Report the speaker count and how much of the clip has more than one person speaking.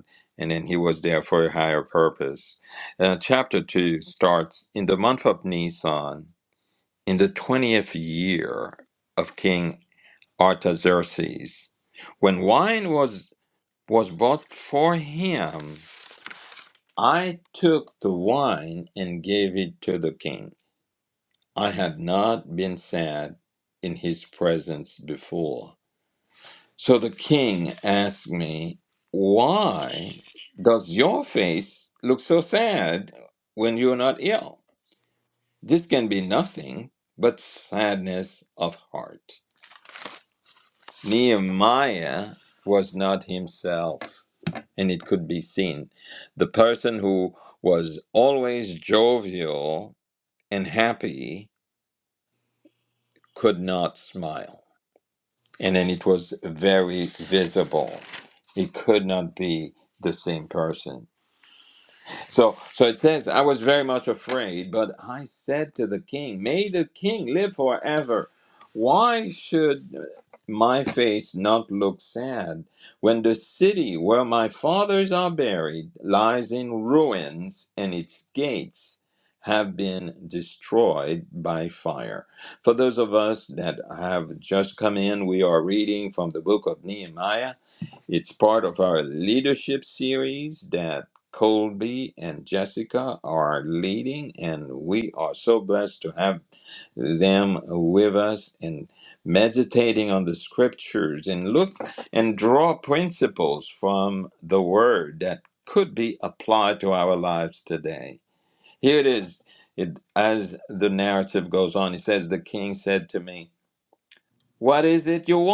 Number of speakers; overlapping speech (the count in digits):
1, no overlap